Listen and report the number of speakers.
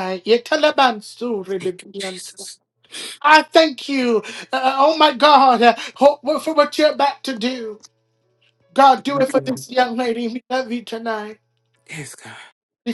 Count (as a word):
two